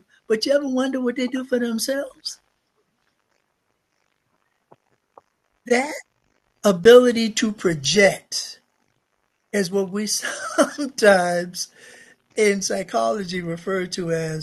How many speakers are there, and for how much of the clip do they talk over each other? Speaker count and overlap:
1, no overlap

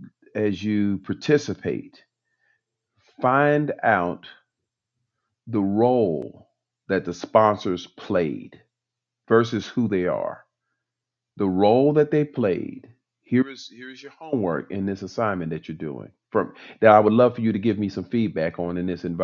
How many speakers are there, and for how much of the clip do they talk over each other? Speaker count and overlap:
1, no overlap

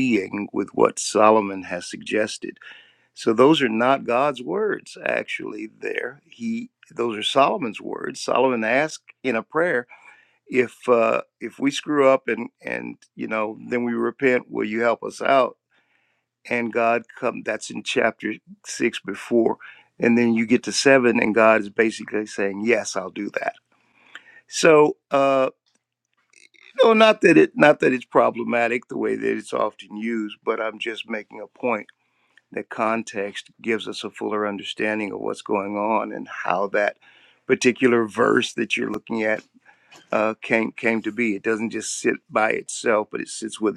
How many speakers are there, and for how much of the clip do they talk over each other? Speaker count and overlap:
1, no overlap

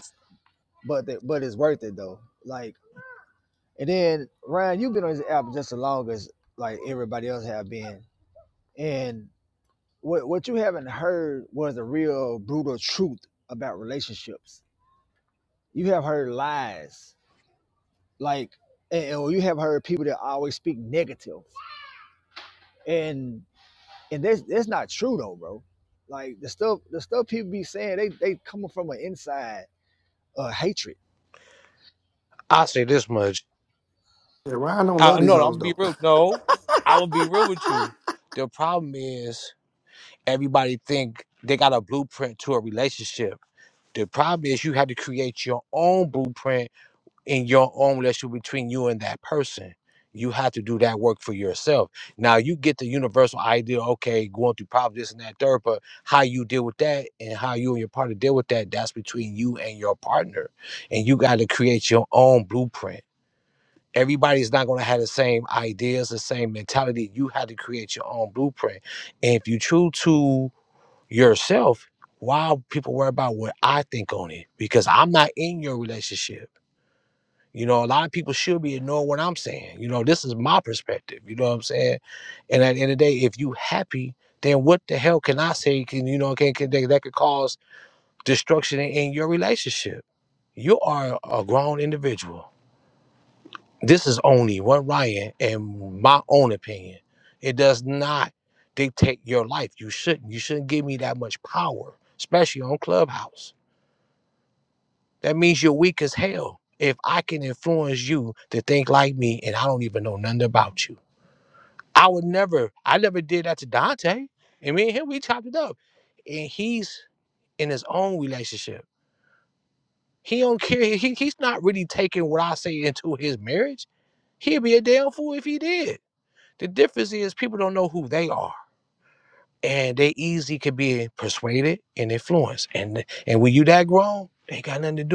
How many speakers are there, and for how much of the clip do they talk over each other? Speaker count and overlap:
3, about 1%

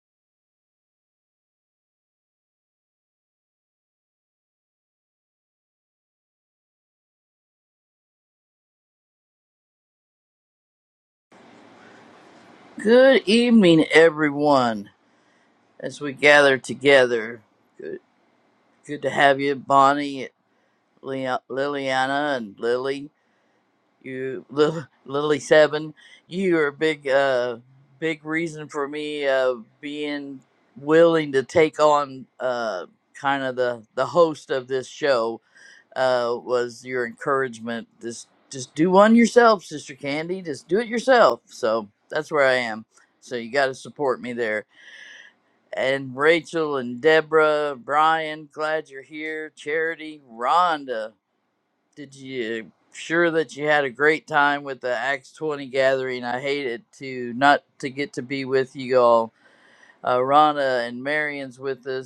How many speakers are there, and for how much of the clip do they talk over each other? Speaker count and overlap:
1, no overlap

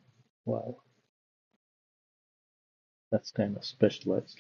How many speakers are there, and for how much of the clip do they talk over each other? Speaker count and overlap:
1, no overlap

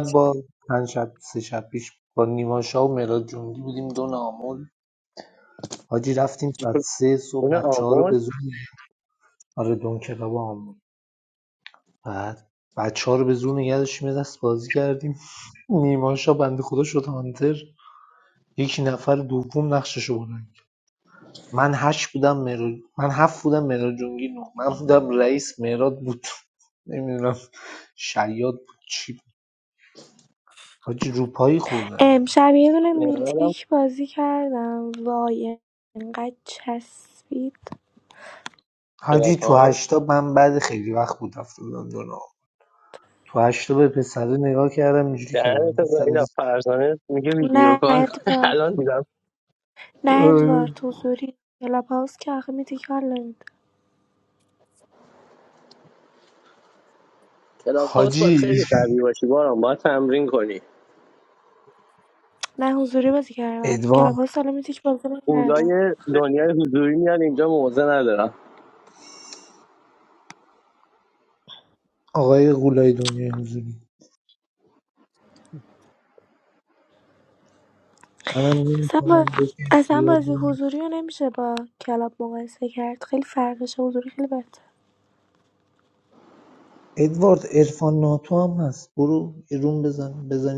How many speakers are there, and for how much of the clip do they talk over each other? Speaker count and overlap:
3, about 8%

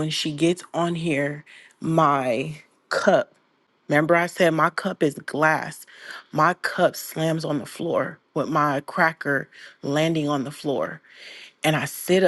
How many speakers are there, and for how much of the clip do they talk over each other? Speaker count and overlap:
1, no overlap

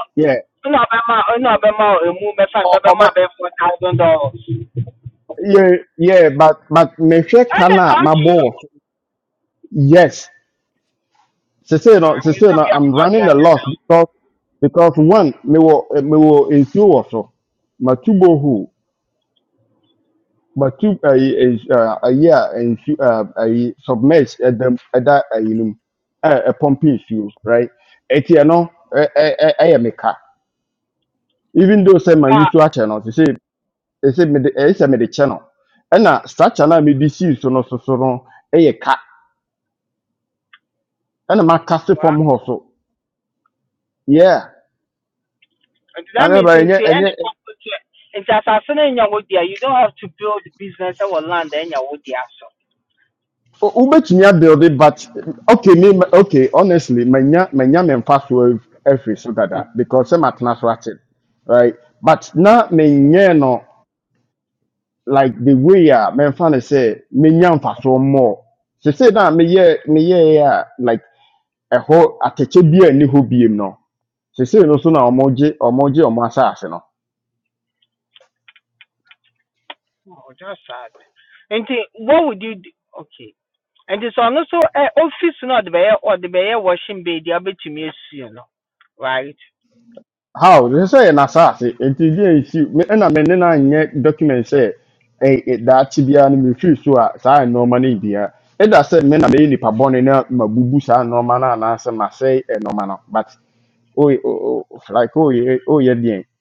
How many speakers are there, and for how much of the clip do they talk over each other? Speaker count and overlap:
2, about 4%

